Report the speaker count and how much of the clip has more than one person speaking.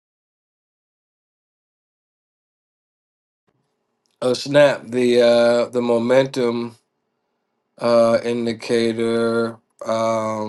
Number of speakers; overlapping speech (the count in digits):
1, no overlap